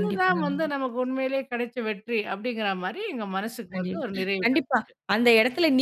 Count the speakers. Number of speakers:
two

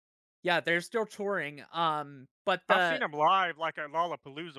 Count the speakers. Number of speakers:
two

